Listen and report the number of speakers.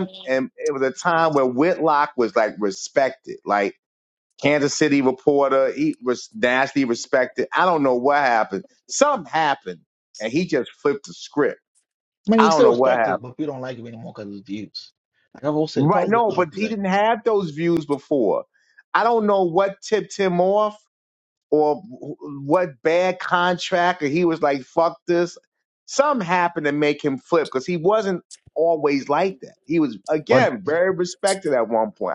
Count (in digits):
2